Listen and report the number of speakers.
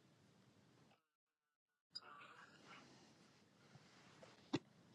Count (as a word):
zero